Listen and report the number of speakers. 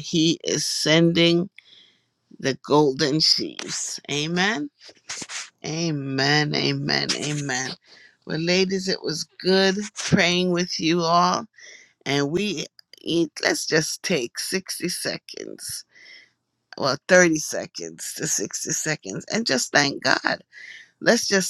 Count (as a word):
one